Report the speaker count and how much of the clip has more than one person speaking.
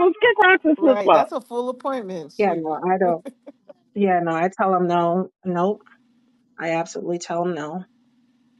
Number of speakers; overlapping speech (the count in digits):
3, about 10%